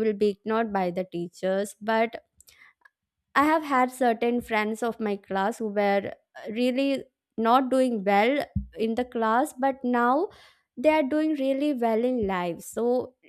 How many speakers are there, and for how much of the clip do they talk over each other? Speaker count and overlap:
1, no overlap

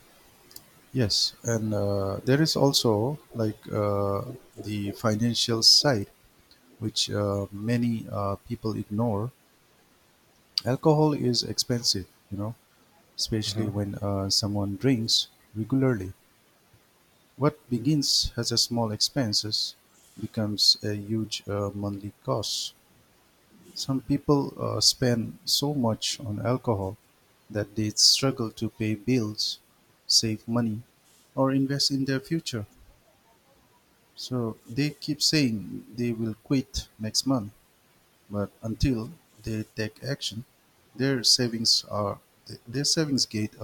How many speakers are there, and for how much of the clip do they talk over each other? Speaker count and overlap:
1, no overlap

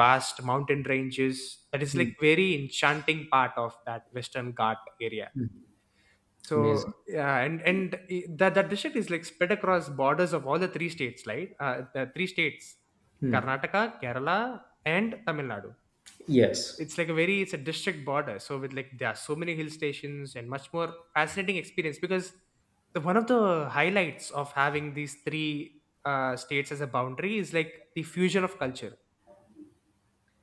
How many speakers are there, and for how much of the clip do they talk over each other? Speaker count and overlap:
2, about 2%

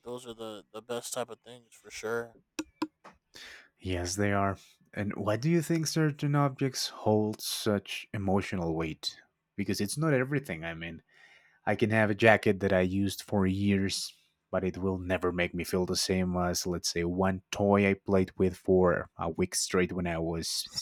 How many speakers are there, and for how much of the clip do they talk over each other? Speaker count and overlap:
2, no overlap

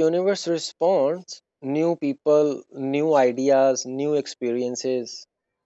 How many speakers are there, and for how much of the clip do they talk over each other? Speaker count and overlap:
1, no overlap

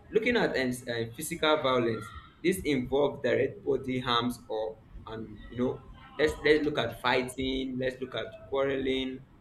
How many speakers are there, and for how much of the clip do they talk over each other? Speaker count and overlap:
1, no overlap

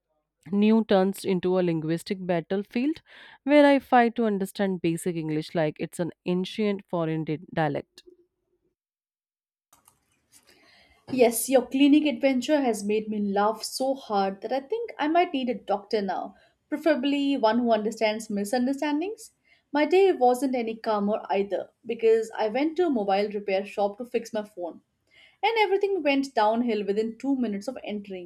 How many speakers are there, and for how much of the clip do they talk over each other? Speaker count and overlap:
2, no overlap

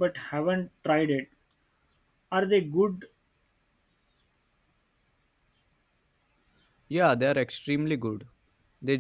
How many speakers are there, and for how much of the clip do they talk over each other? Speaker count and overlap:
2, no overlap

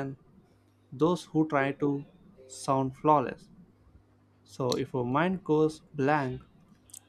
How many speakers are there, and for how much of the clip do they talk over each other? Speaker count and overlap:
1, no overlap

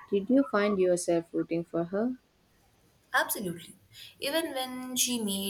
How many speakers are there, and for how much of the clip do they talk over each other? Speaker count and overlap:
2, no overlap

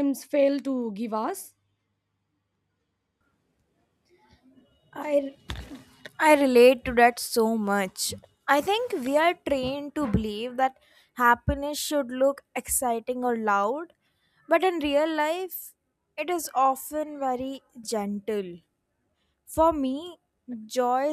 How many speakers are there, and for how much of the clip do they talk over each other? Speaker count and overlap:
2, no overlap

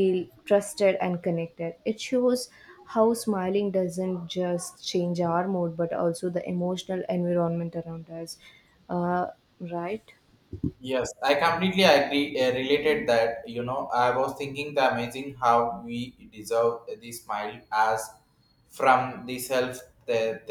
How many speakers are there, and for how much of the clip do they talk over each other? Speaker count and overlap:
2, no overlap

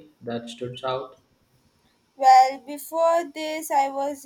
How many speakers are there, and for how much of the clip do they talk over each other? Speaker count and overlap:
2, no overlap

